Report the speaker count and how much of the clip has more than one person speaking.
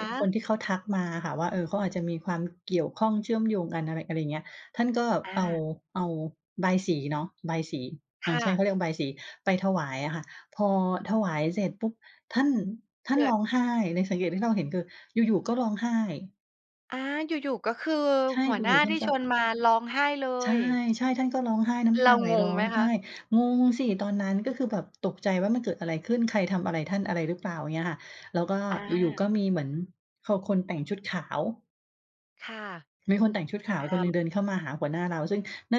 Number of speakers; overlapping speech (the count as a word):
two, about 10%